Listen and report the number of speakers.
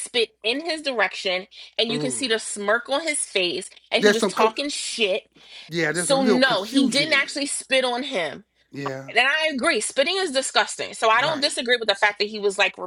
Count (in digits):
2